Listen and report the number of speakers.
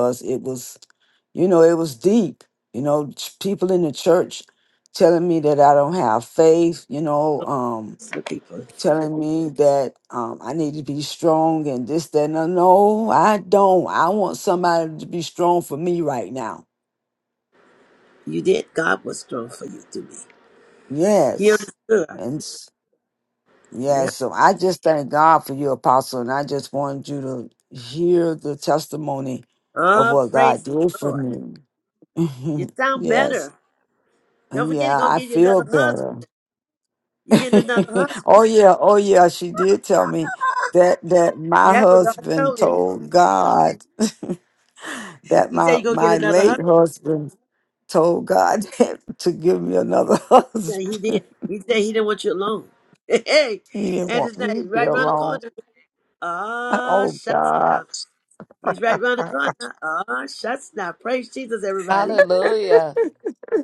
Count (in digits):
3